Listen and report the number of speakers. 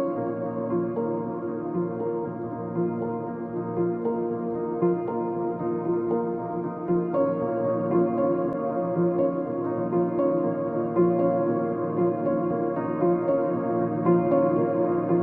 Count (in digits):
0